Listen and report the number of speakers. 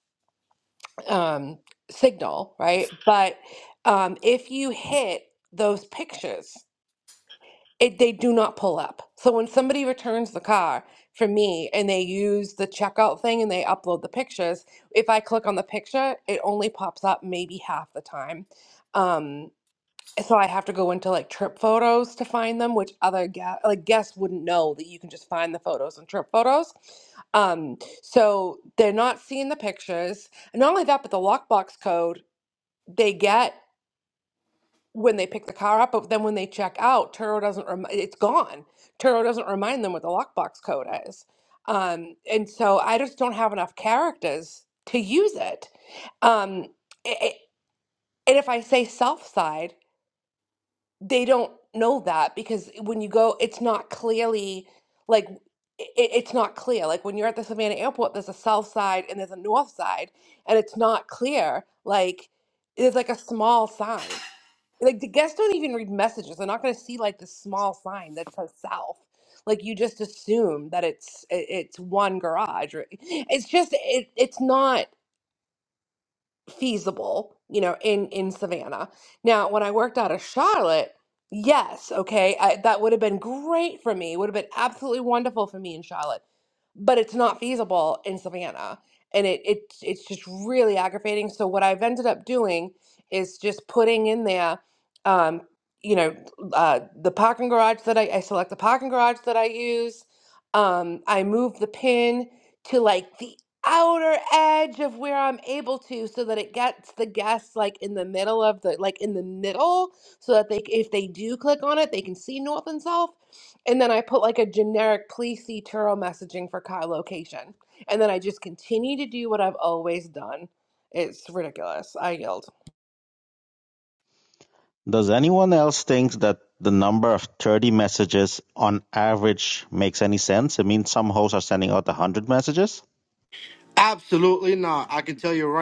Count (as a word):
three